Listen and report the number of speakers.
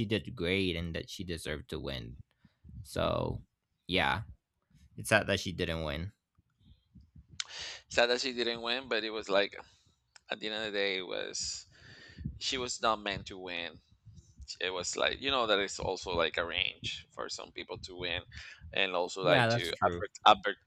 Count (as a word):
two